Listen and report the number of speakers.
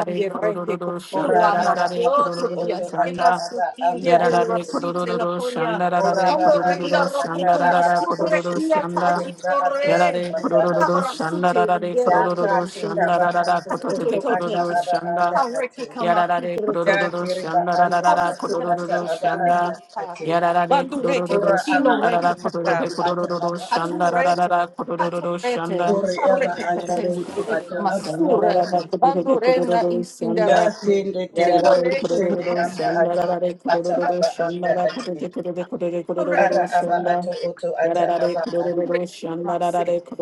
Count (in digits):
3